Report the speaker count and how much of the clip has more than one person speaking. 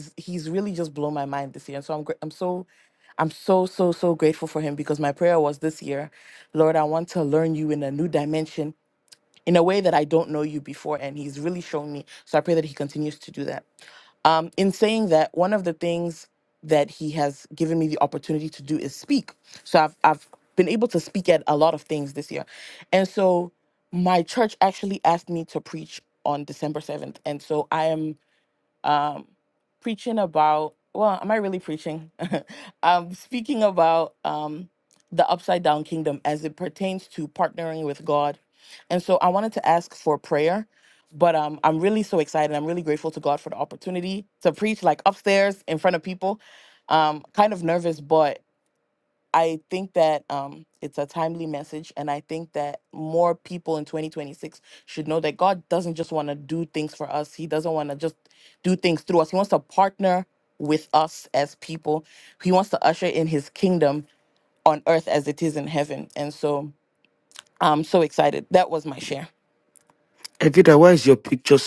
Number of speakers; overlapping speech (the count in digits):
2, no overlap